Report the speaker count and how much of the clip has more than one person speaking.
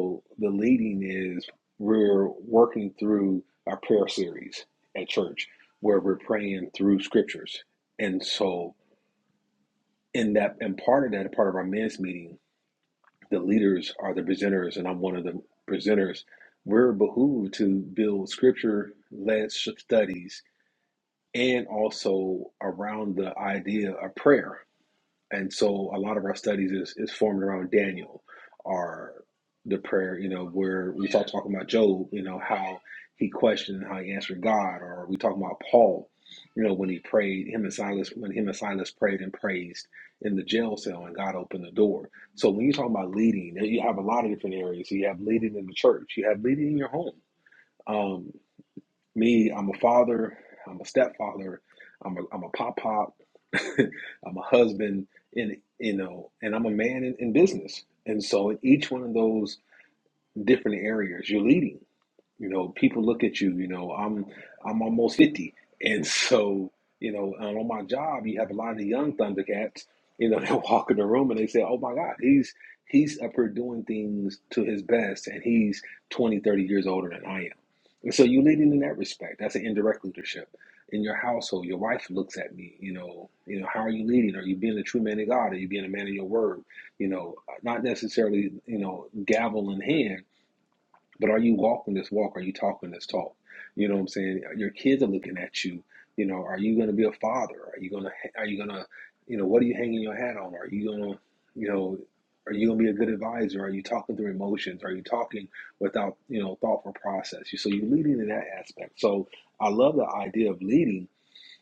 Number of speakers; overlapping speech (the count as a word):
one, no overlap